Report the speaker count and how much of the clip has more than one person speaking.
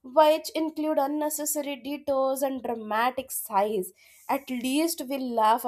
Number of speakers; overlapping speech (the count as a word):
one, no overlap